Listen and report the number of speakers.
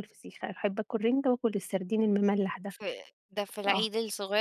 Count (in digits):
2